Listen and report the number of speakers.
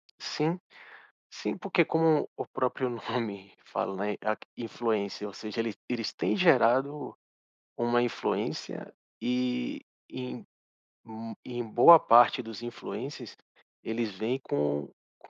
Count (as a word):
one